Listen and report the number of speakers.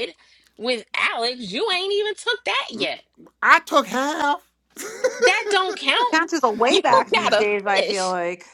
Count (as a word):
three